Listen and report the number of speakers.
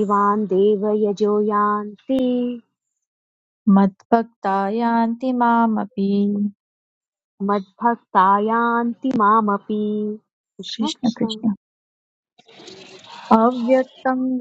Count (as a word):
two